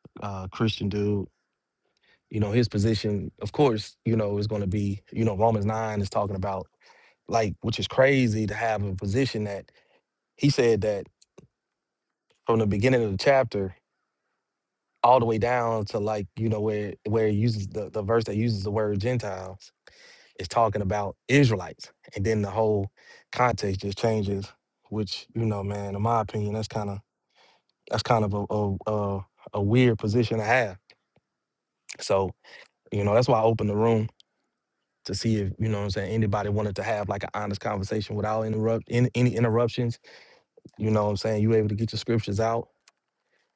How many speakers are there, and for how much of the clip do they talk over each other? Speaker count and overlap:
1, no overlap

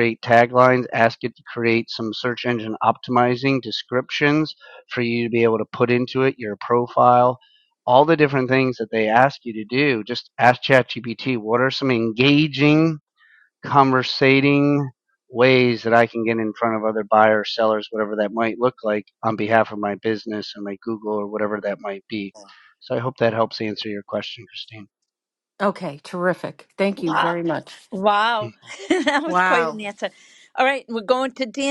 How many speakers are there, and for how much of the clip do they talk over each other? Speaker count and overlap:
3, about 3%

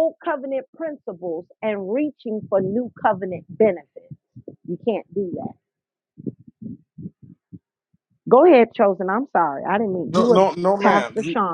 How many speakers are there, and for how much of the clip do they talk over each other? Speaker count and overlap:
2, about 8%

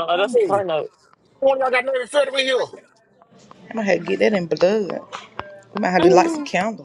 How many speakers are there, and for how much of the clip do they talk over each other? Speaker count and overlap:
3, about 11%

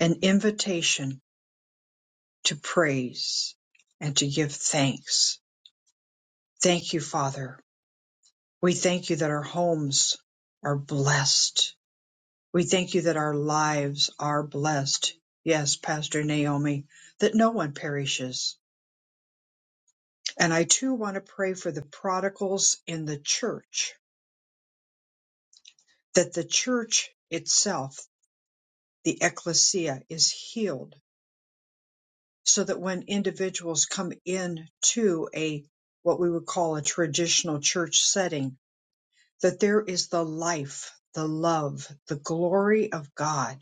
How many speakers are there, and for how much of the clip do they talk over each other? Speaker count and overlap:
1, no overlap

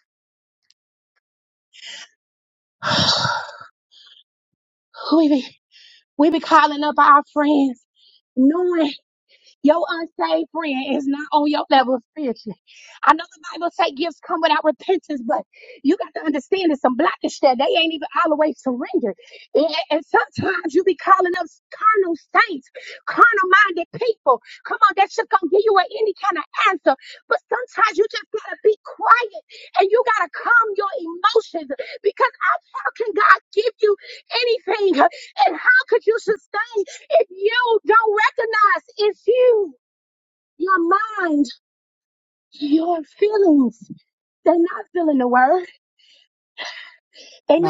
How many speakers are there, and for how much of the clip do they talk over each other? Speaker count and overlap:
1, no overlap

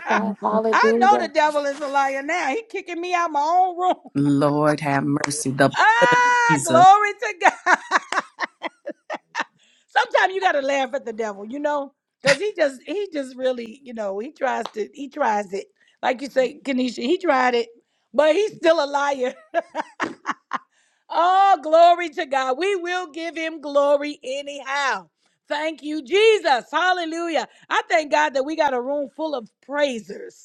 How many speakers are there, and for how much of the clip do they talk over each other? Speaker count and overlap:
3, about 3%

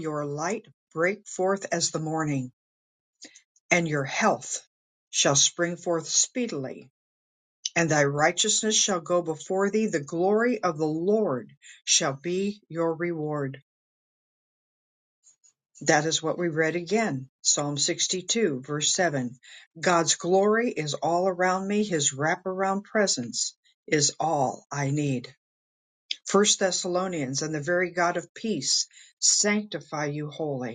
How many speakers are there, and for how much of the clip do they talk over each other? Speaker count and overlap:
1, no overlap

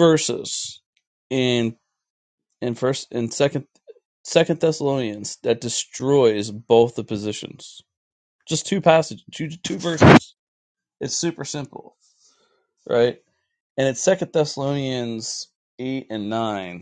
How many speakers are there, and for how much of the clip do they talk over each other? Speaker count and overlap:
1, no overlap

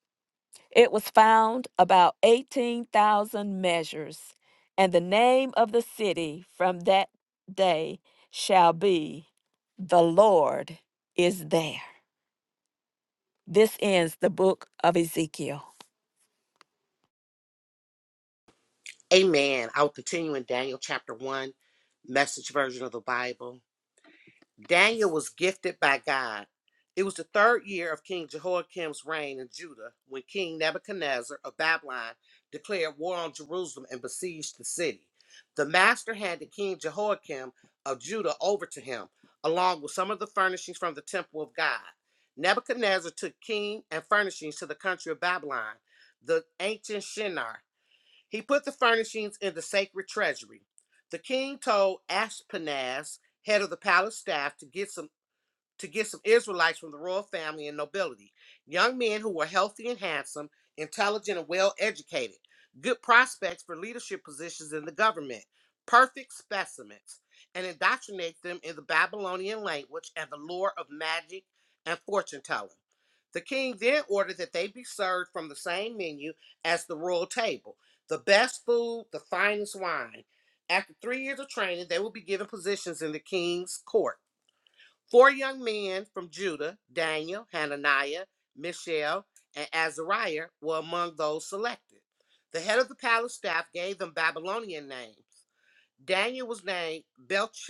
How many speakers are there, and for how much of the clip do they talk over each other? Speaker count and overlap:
2, no overlap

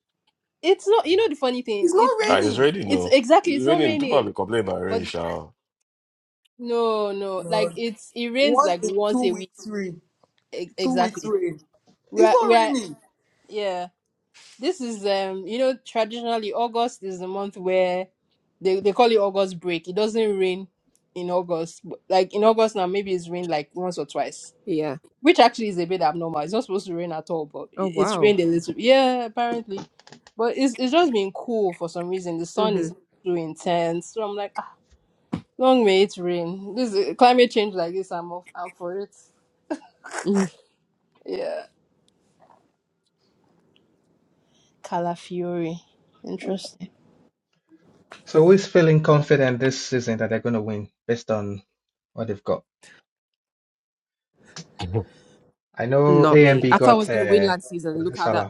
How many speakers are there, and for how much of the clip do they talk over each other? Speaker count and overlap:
5, about 12%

